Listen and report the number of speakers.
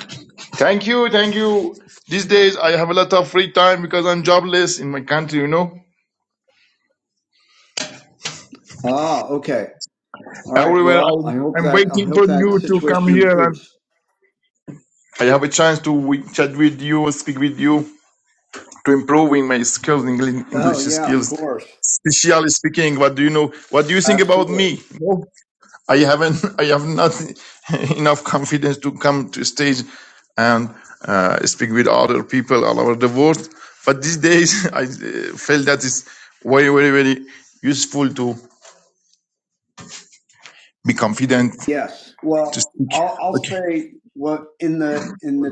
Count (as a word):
two